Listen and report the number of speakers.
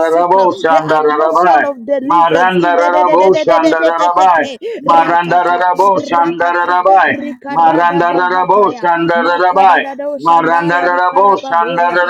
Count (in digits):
2